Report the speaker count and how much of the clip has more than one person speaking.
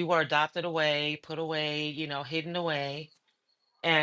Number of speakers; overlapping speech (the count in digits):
1, no overlap